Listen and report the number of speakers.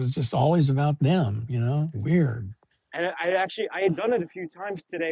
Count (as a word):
two